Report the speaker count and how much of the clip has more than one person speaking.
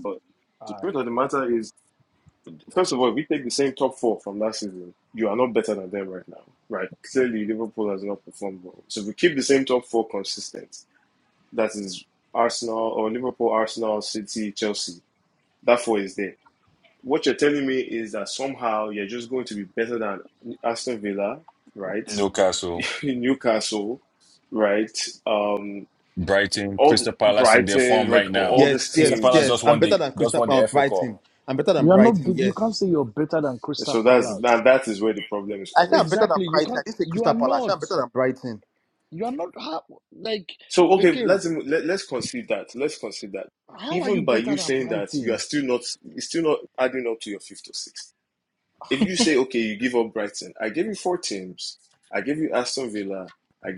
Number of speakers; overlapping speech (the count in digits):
4, about 18%